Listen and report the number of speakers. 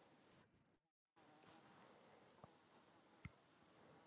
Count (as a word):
zero